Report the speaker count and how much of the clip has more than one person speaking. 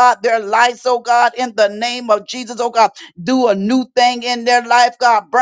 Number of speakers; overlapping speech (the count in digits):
1, no overlap